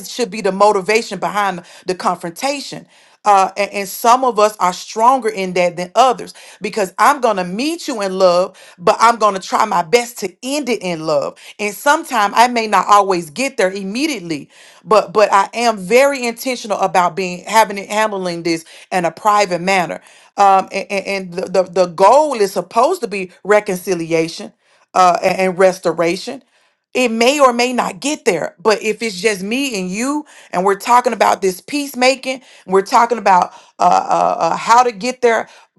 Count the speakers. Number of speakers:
1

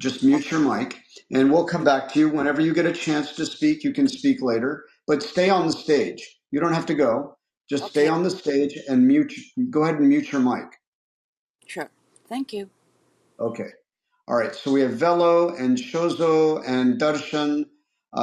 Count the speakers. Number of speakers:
2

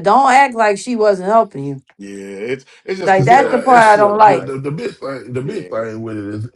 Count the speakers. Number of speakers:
3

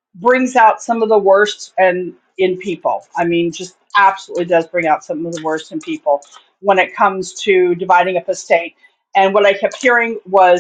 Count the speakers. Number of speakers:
1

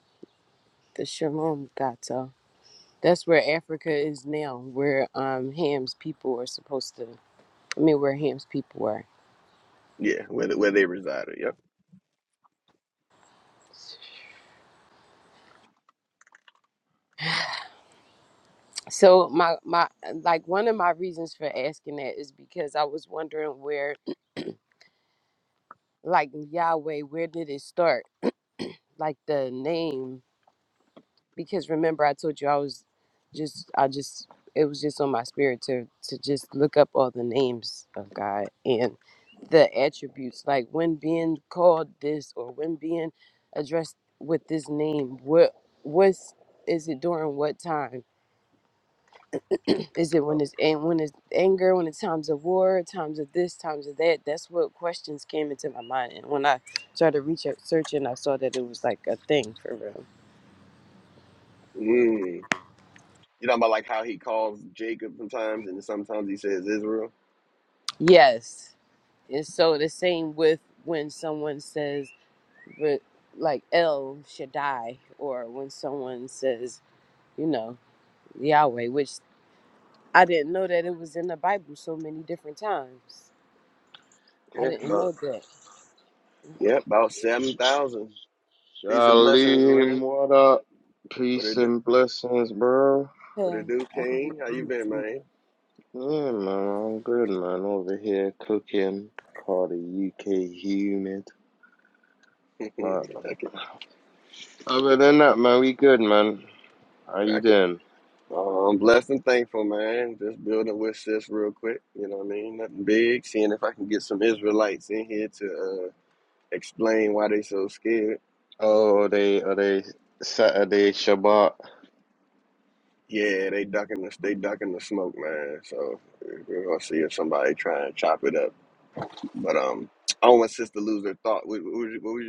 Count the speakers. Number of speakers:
3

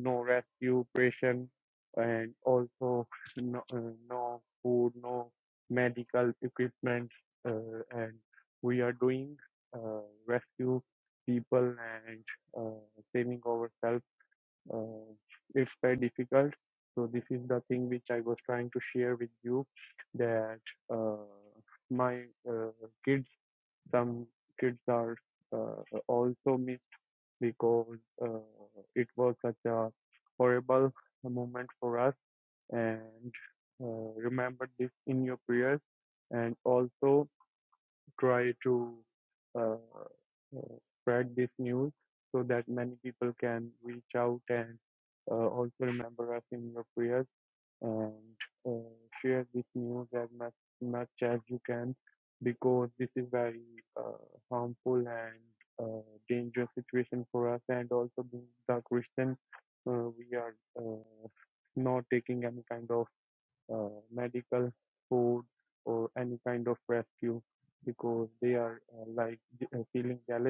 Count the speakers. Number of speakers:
1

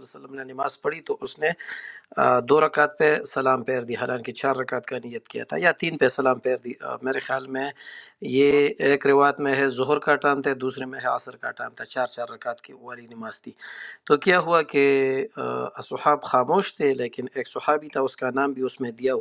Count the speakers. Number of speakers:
1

